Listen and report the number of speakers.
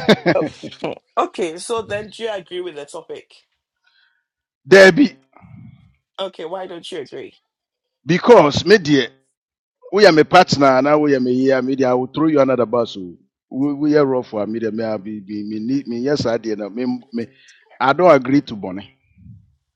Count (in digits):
2